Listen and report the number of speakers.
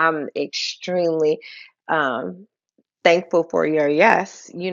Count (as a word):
one